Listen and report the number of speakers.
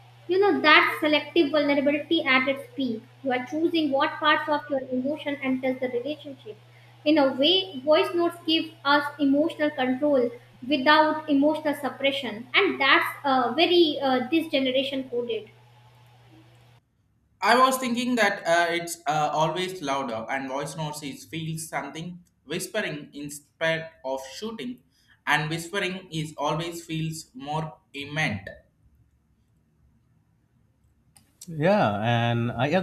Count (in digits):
3